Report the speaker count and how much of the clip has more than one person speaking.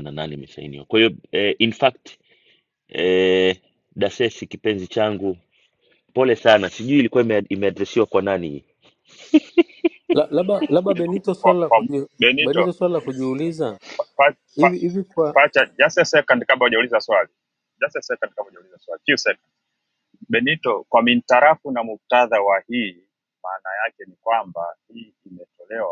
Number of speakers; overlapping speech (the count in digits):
3, about 4%